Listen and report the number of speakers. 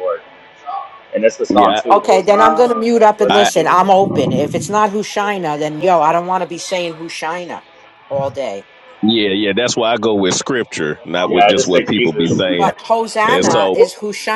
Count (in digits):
3